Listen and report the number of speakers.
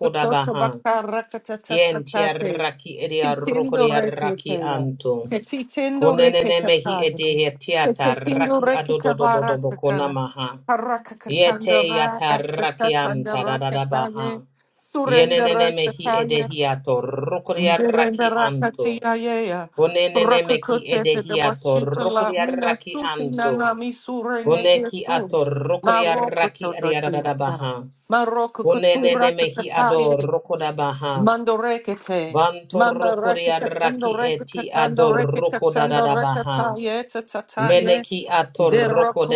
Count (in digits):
2